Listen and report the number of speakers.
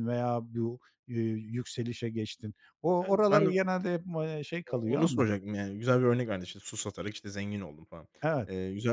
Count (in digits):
2